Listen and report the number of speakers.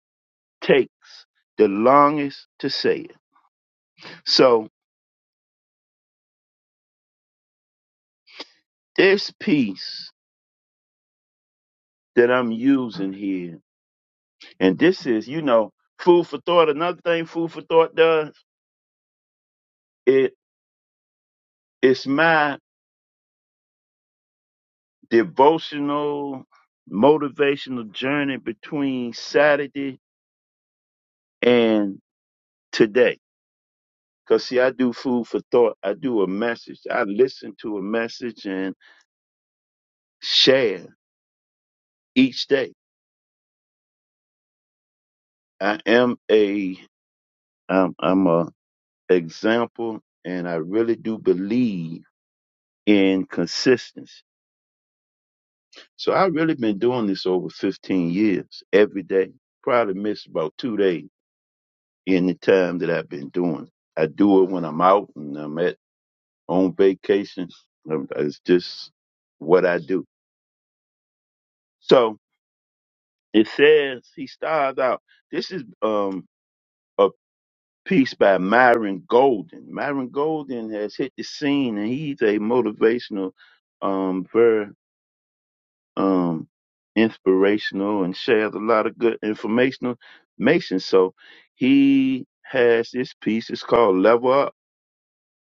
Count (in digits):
1